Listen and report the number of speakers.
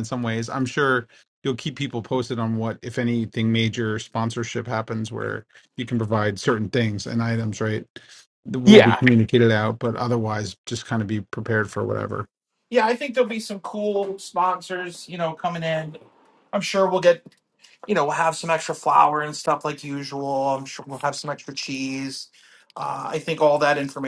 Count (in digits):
2